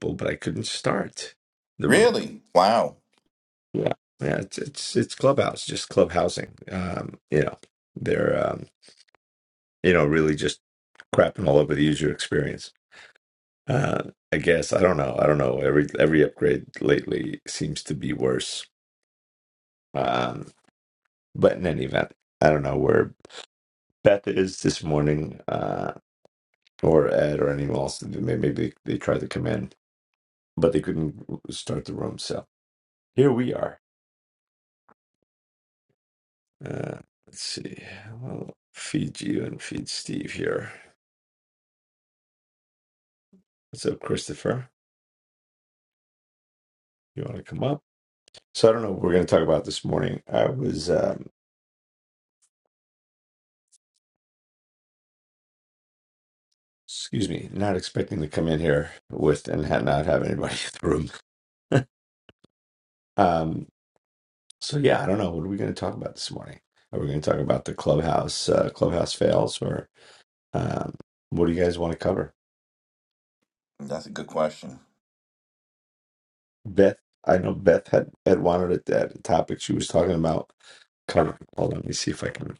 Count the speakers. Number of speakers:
2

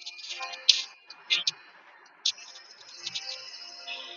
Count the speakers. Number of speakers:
0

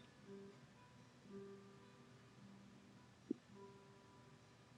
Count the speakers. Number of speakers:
0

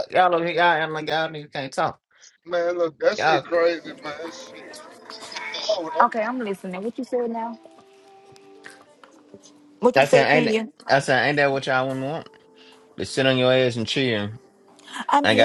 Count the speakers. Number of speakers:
3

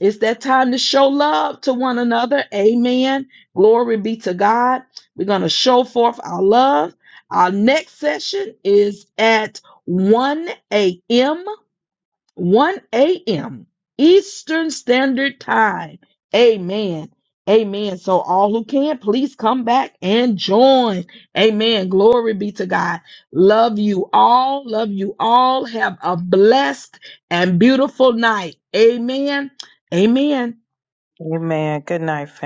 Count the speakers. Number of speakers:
2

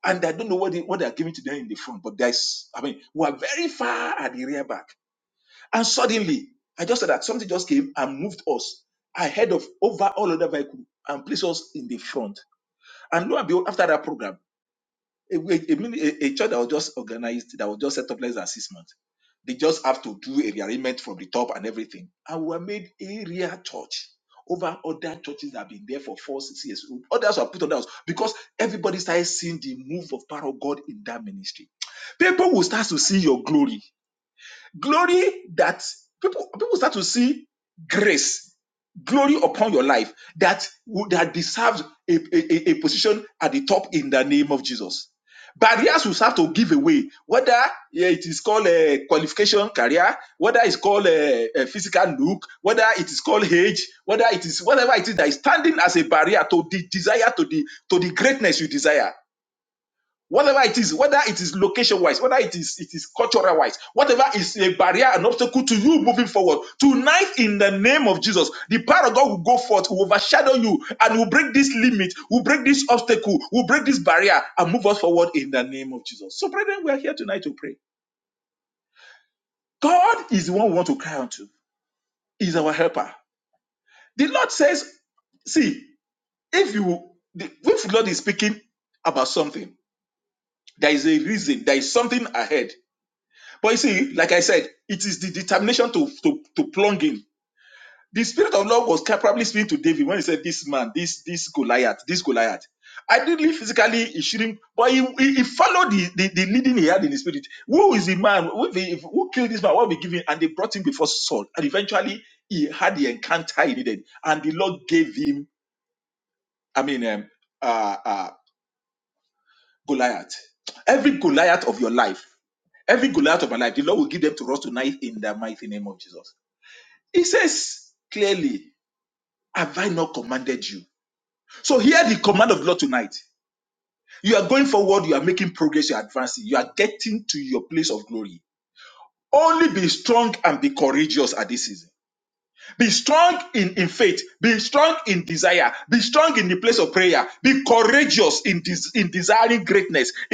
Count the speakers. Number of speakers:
1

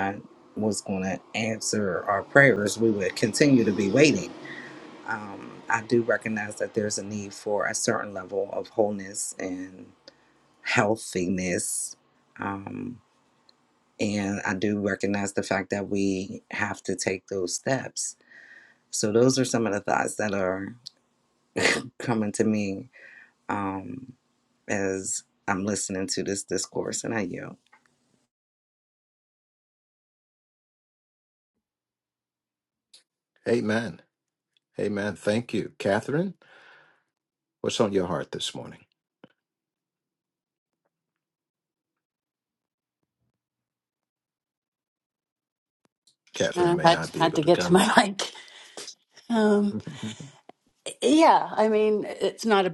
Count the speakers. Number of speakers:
3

